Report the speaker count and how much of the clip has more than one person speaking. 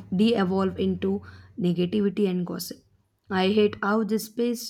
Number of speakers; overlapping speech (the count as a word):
one, no overlap